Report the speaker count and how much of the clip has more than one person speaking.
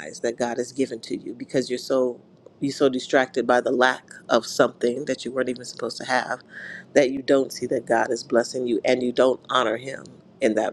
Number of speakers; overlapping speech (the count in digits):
1, no overlap